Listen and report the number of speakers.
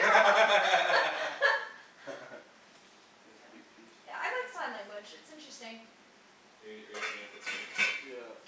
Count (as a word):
three